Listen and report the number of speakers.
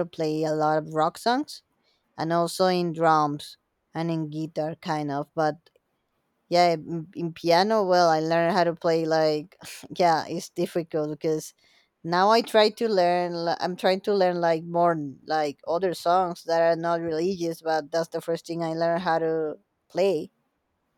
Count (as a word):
one